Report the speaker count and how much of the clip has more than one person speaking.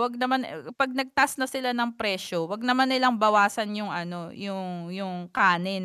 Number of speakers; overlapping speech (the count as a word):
one, no overlap